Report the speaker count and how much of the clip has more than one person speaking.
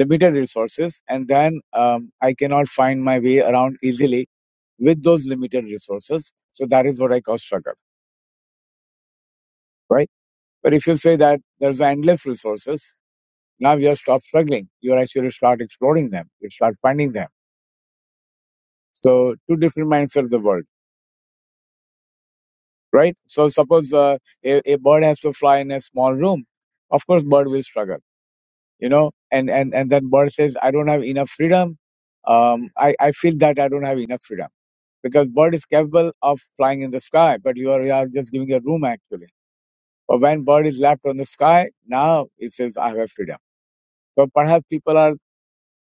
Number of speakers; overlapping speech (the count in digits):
1, no overlap